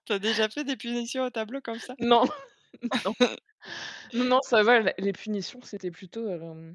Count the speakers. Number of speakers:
2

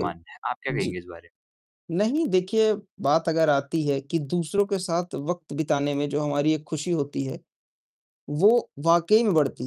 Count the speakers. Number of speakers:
2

